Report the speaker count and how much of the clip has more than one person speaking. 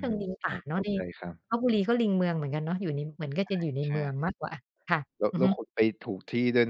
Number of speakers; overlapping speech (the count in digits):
2, about 21%